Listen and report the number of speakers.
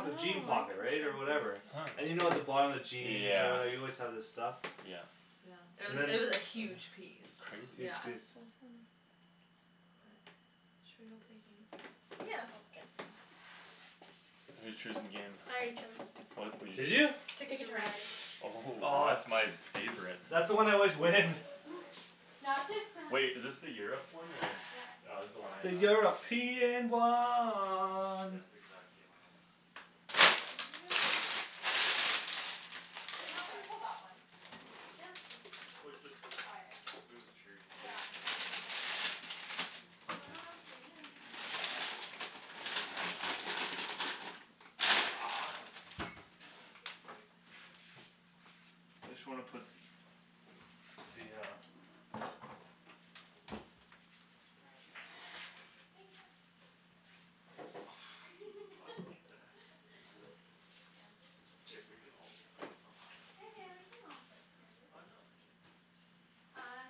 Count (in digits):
4